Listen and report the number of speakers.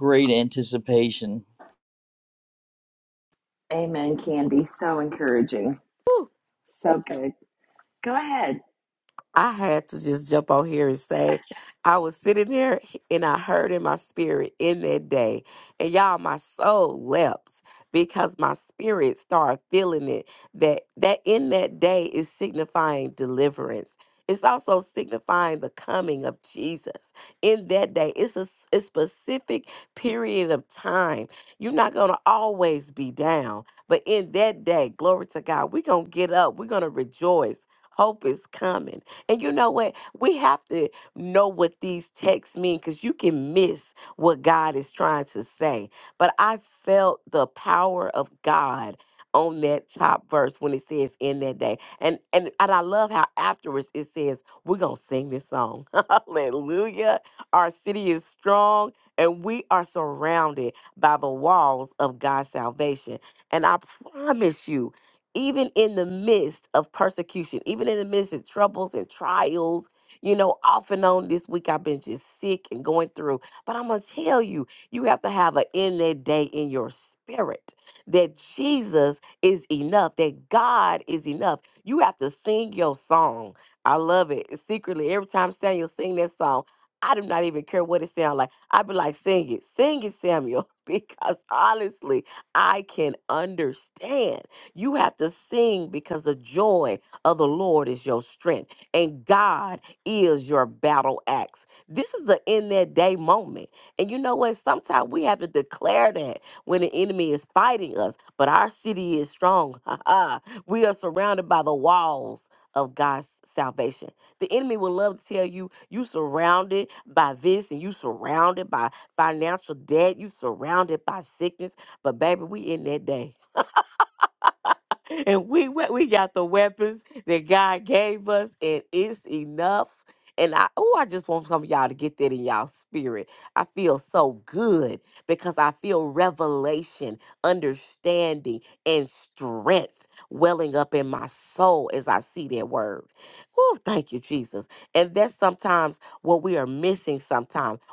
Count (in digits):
3